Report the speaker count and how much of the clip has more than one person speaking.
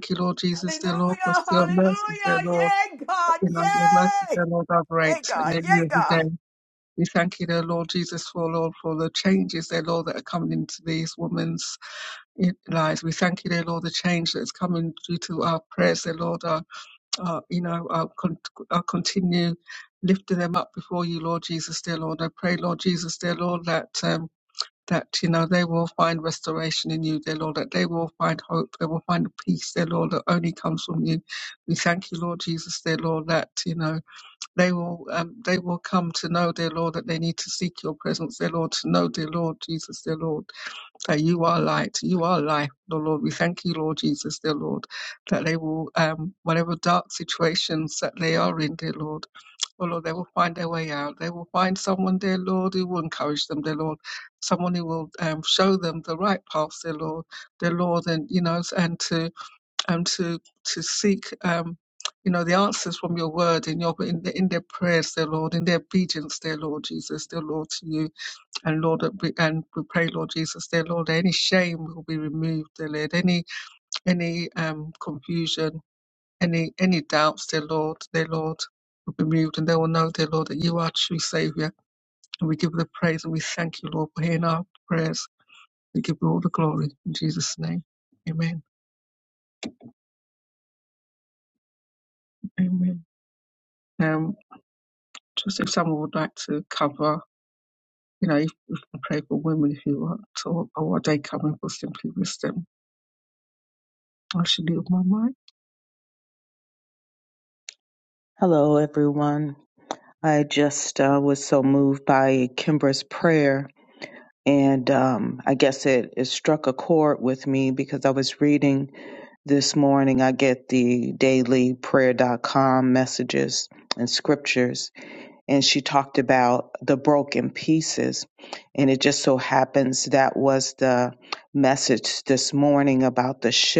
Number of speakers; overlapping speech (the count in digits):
3, about 3%